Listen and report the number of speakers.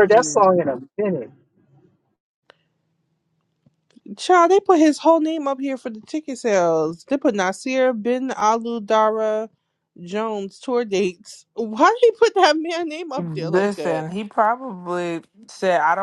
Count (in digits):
3